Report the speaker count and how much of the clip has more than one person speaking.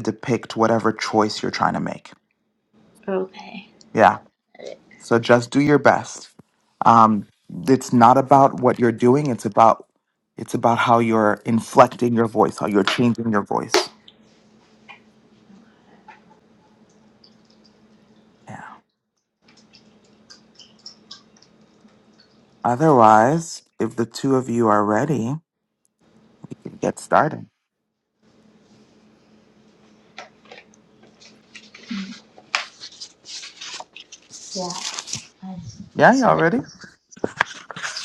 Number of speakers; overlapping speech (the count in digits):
2, about 1%